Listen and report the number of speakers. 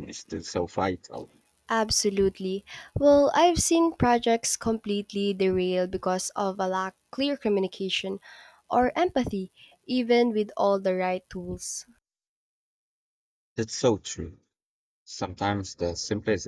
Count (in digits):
2